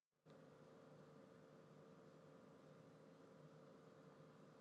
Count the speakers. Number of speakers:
0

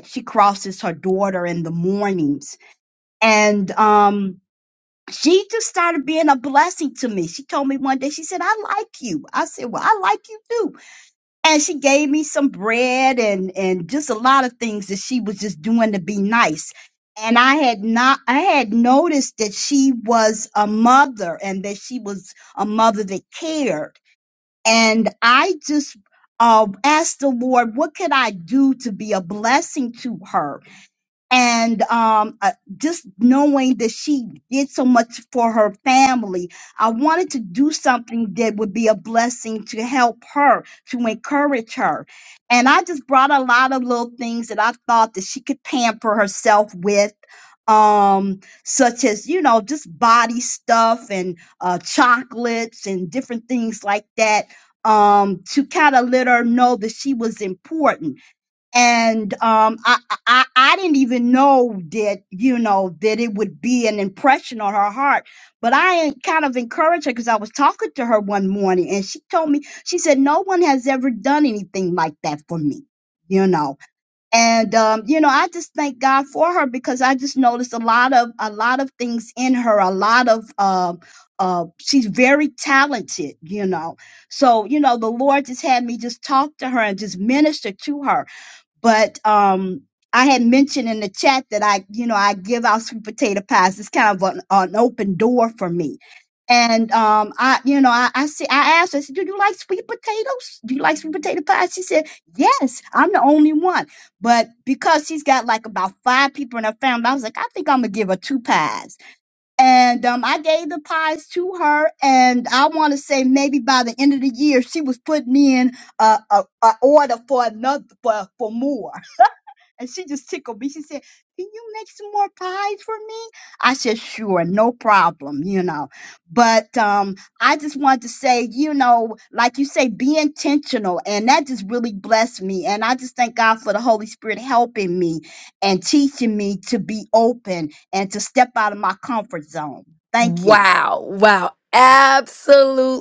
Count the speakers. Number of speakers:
2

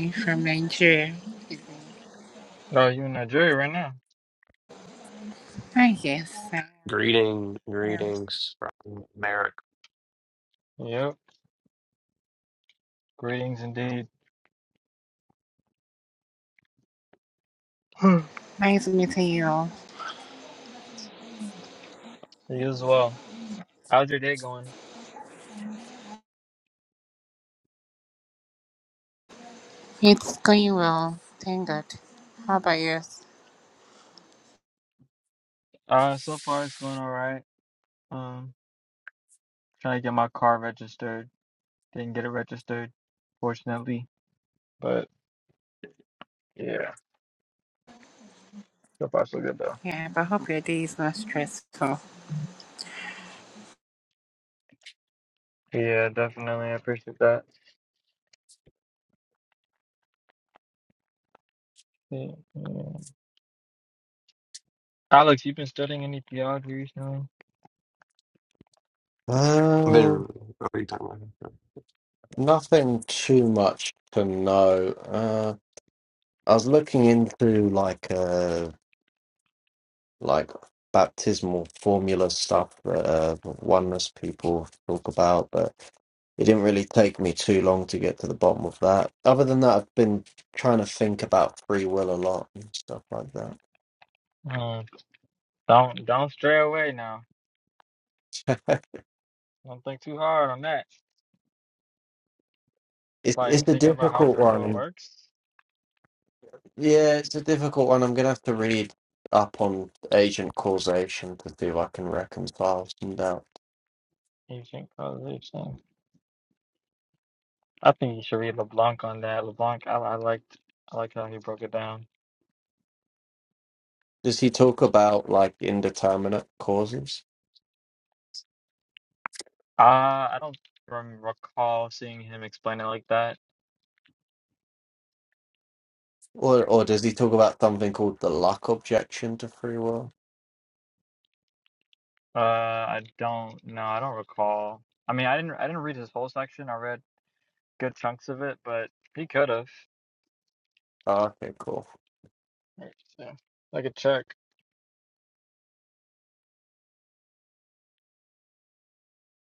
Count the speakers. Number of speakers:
4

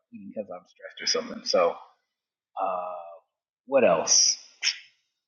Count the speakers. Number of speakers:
1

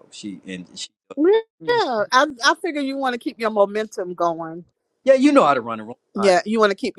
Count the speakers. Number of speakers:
2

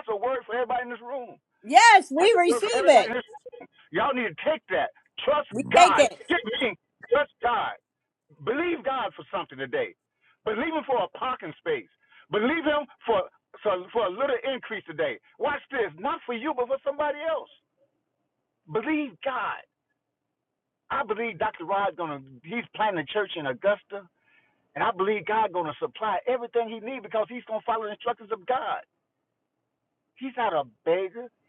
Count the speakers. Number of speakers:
2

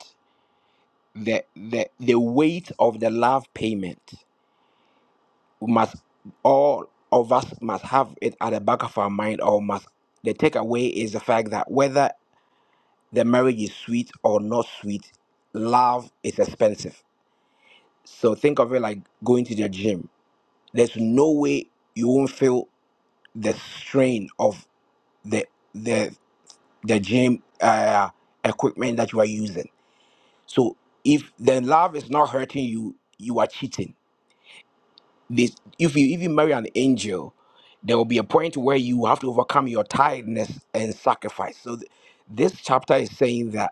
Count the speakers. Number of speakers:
1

